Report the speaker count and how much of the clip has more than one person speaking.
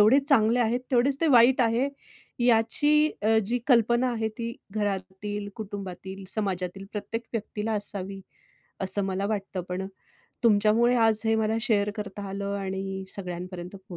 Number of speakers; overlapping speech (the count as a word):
one, no overlap